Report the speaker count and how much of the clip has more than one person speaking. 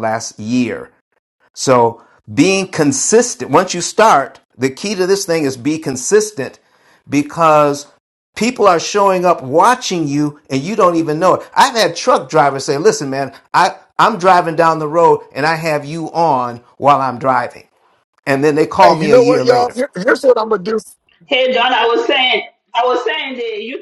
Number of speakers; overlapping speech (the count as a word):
three, about 4%